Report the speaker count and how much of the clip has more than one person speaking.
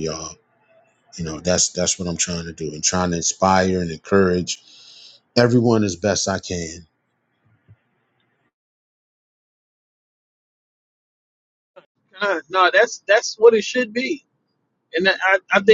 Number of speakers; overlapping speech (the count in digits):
2, no overlap